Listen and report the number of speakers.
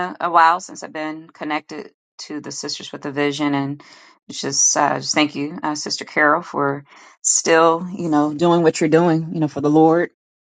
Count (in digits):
1